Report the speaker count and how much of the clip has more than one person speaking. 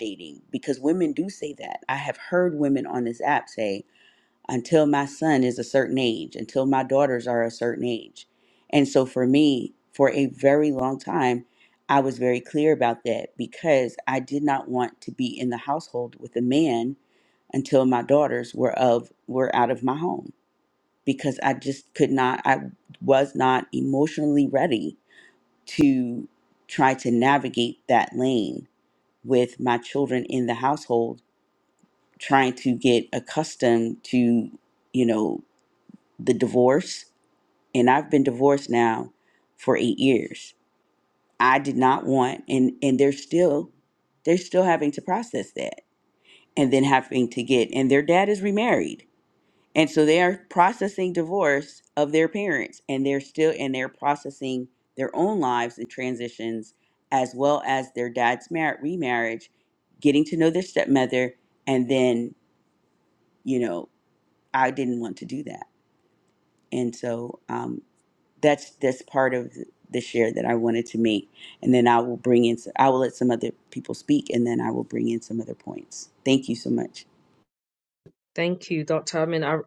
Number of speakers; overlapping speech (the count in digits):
2, no overlap